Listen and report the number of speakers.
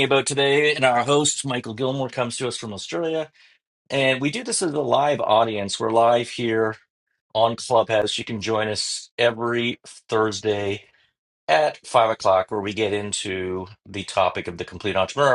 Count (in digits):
1